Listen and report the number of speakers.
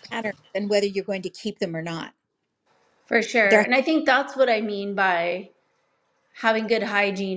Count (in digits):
2